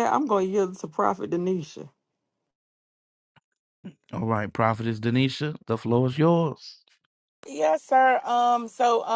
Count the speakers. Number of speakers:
three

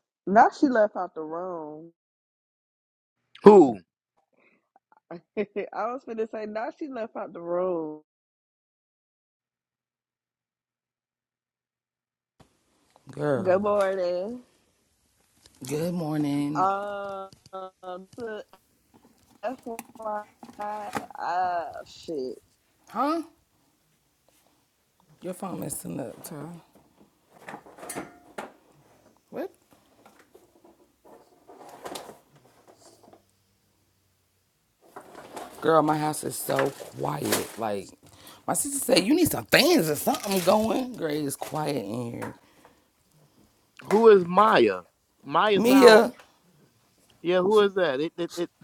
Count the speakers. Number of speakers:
three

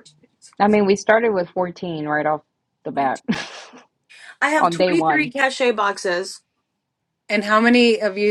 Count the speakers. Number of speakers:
three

